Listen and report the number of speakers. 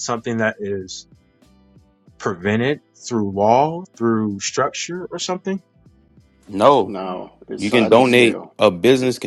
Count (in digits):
3